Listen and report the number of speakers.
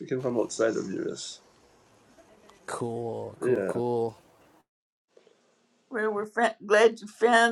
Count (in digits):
3